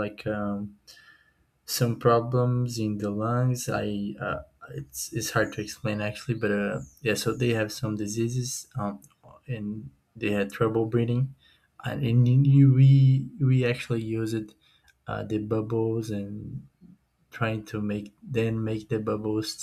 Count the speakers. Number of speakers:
1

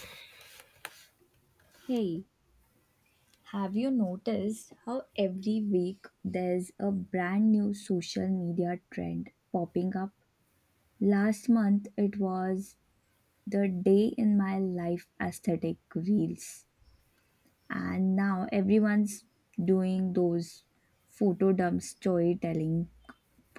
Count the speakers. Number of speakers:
1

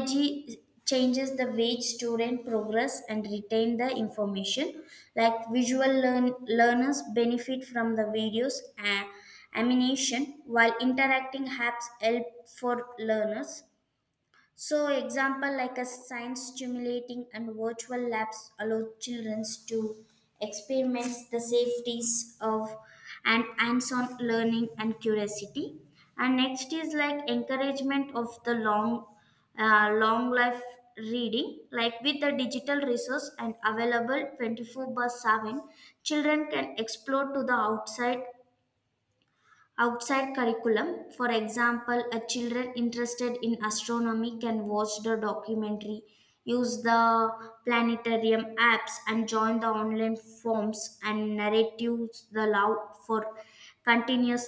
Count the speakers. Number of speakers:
1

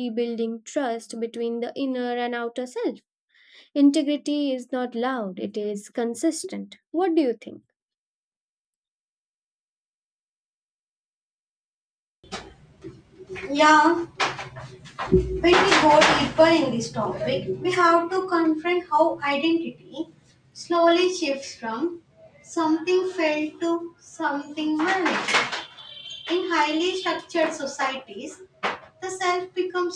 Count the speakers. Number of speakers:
2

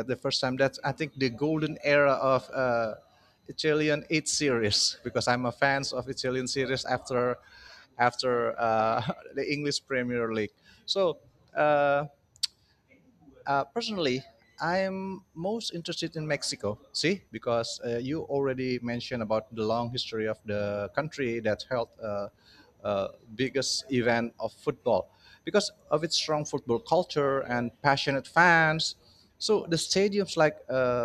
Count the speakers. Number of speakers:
1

